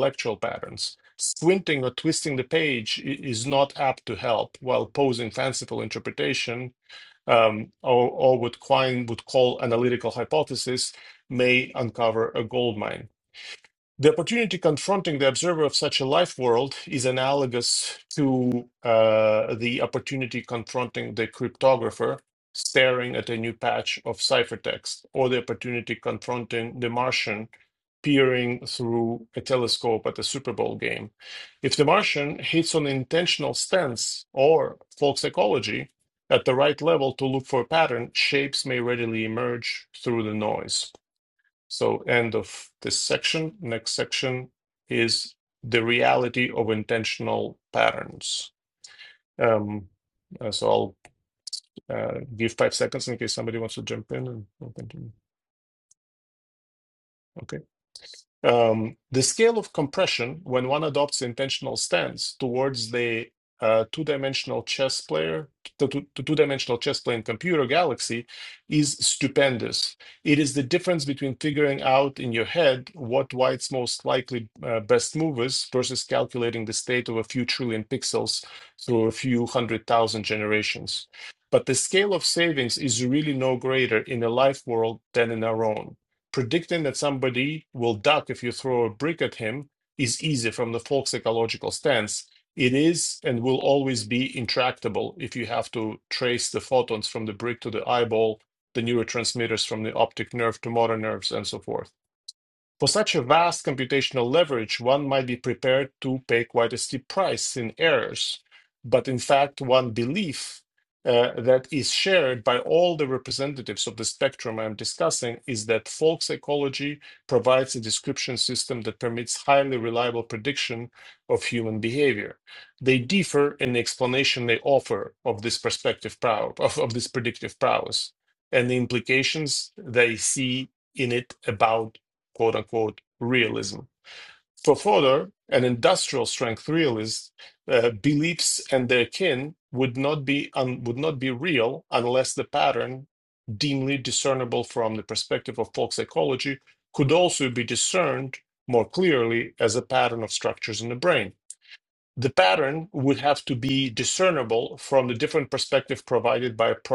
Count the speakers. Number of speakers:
1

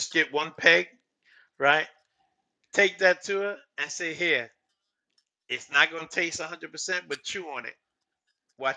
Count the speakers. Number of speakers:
1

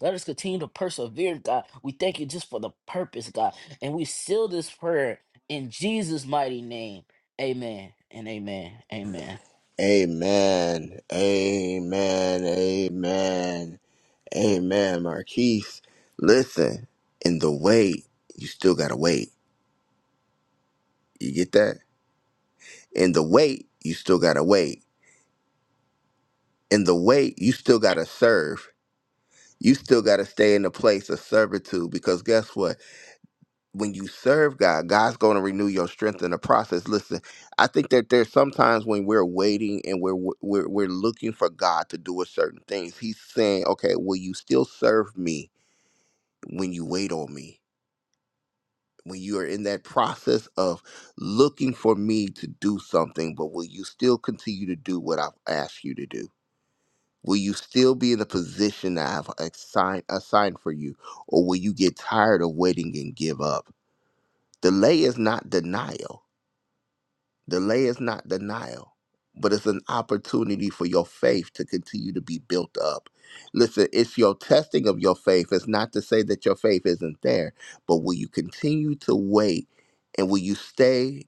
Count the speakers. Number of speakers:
2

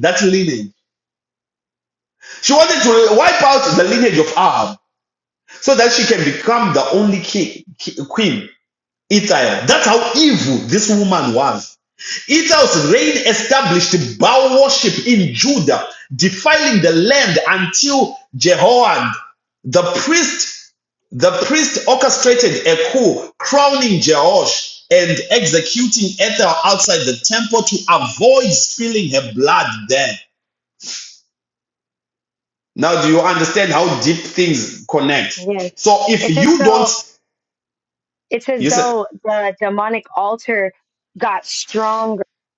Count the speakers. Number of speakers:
2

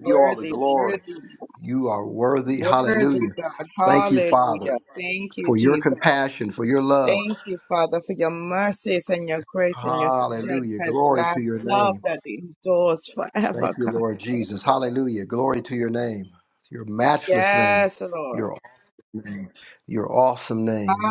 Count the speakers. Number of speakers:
2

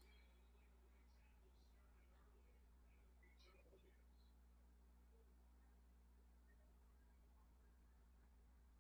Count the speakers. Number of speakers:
0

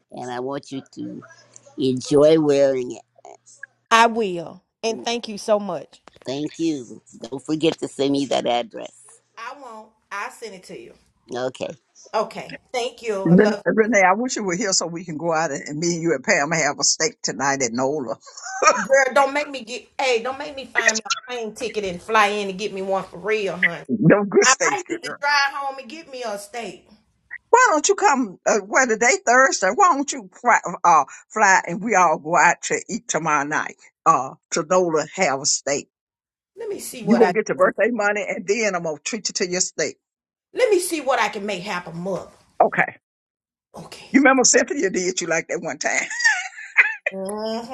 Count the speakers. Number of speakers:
3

